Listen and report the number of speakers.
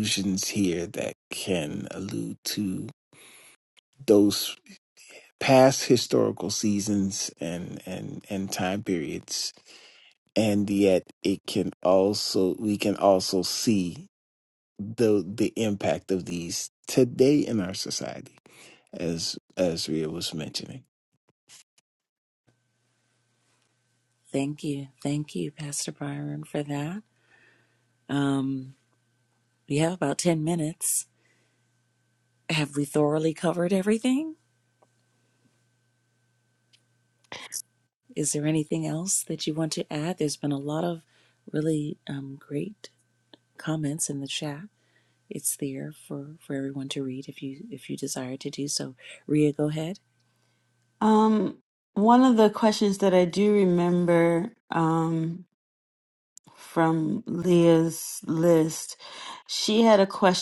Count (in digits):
3